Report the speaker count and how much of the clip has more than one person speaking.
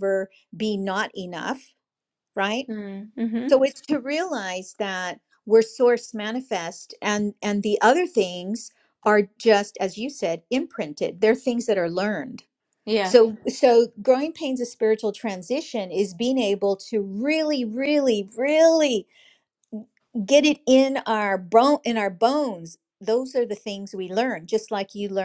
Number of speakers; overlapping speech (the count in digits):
2, under 1%